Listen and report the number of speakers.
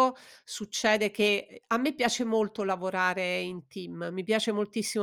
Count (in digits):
1